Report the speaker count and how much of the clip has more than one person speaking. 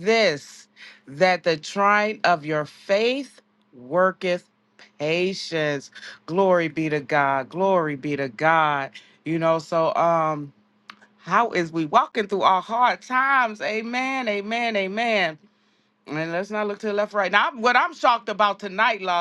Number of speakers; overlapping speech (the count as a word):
one, no overlap